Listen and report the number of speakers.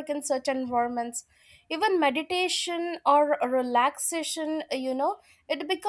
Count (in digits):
1